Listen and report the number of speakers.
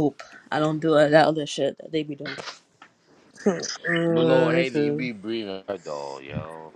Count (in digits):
3